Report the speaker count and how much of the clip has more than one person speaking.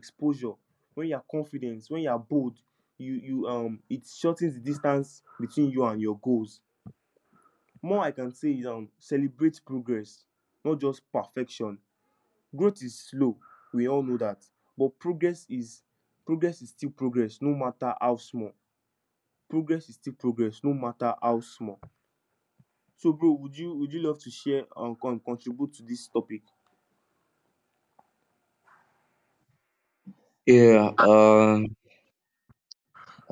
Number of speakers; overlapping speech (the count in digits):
2, no overlap